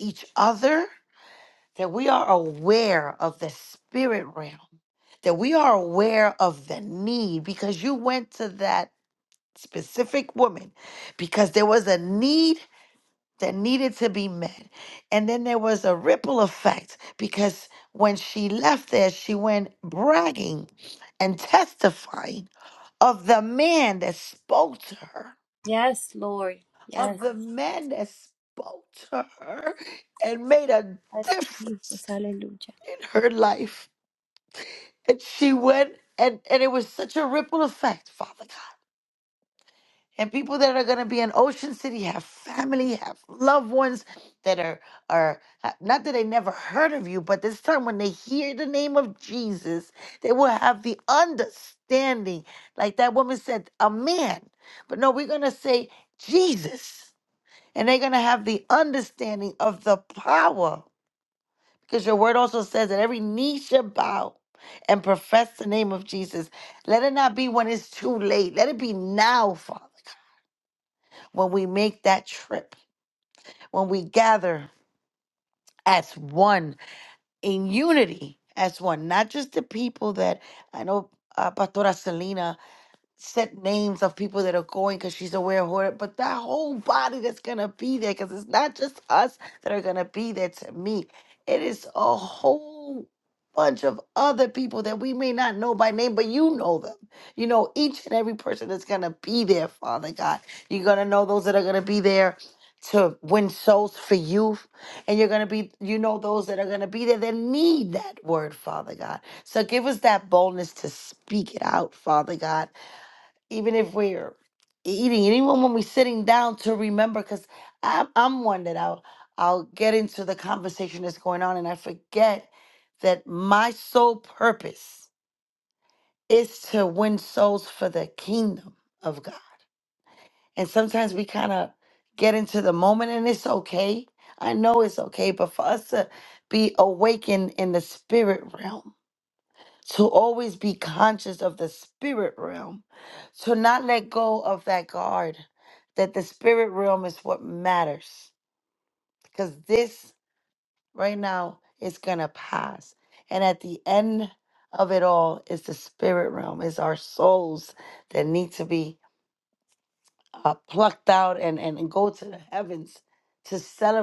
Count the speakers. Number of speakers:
2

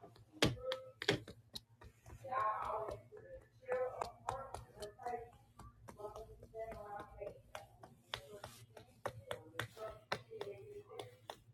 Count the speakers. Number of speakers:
0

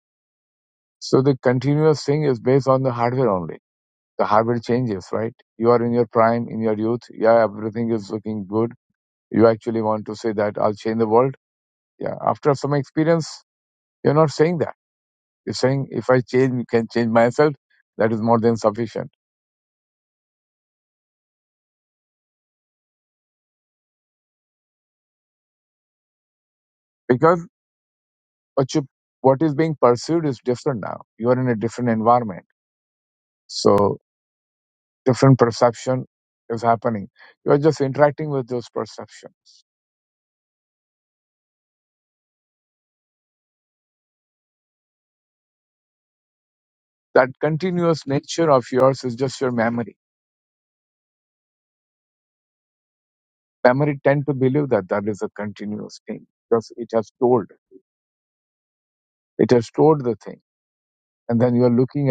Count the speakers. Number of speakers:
1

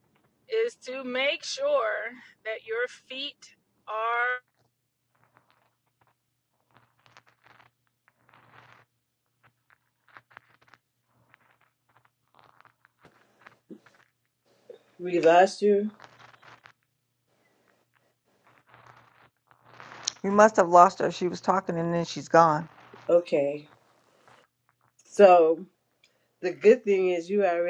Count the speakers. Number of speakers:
3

